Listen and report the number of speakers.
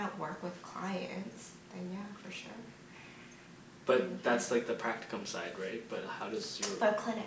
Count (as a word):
two